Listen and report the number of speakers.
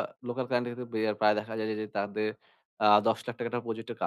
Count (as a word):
one